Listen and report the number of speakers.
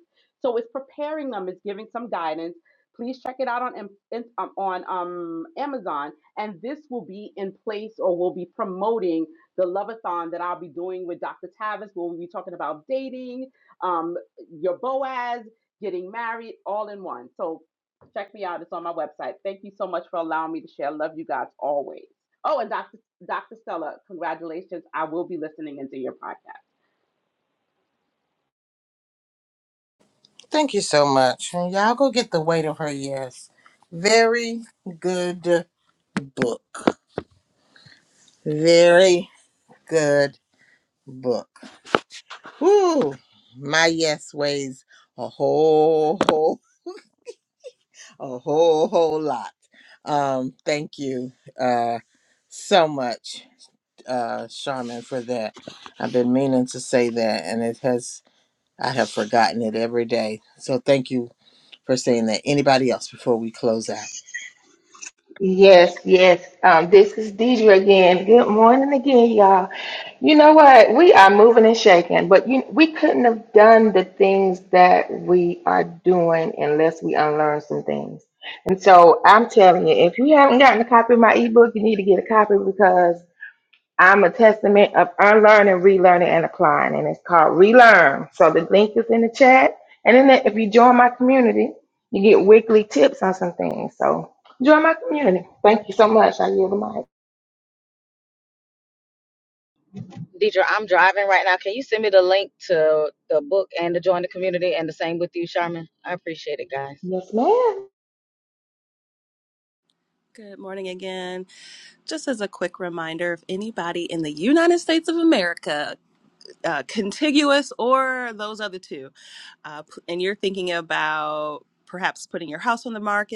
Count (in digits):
5